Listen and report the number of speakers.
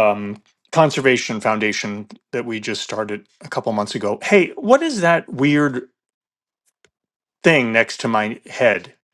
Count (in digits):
1